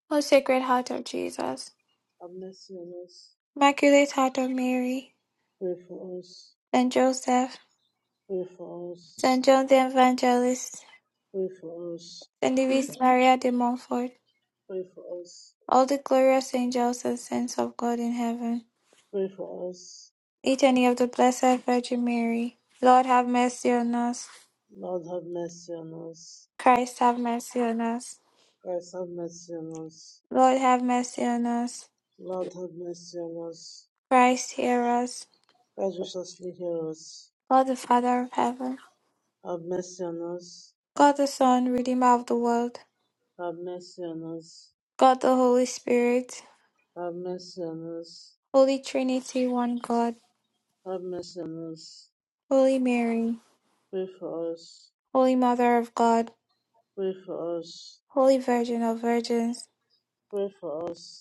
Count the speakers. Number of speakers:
2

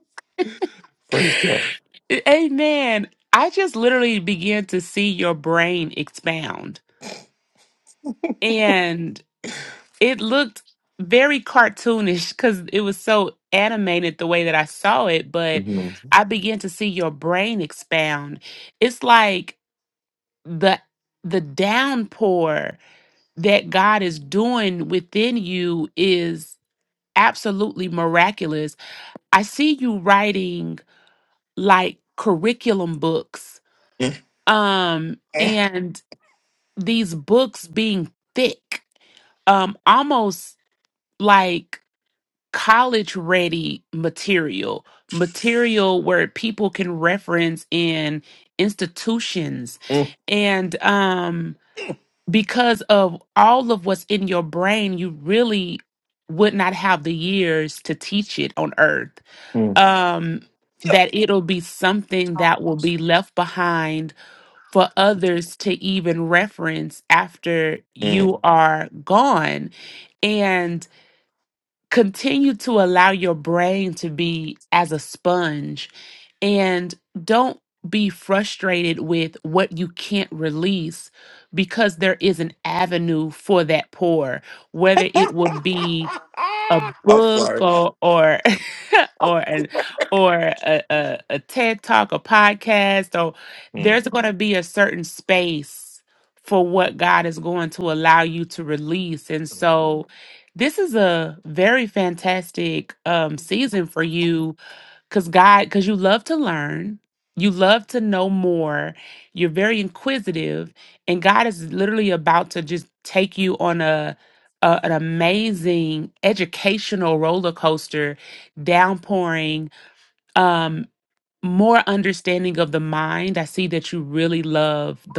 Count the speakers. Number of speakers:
2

